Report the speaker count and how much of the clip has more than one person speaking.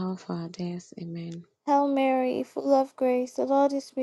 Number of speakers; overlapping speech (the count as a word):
two, no overlap